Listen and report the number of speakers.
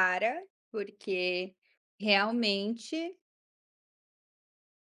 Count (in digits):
1